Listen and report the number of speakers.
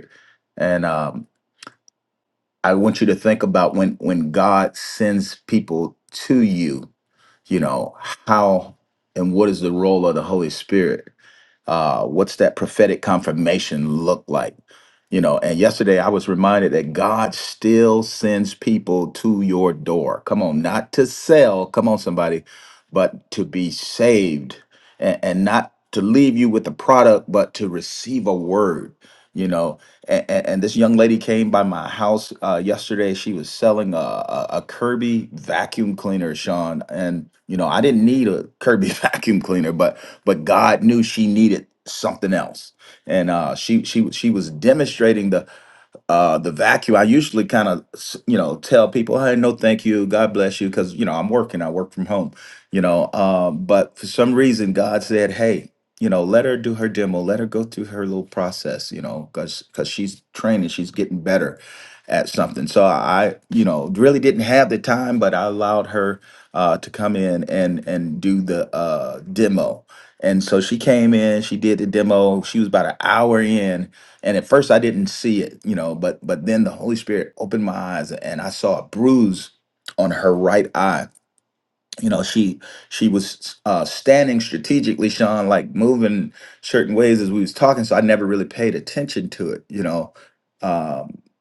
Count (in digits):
1